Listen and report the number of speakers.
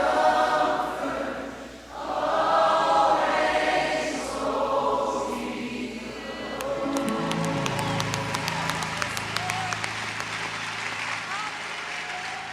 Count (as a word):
zero